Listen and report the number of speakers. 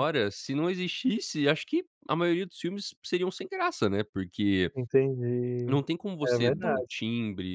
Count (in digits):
2